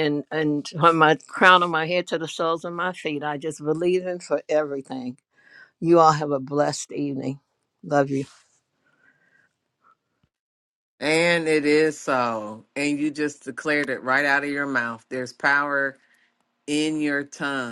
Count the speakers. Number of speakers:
2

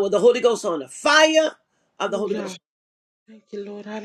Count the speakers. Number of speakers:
2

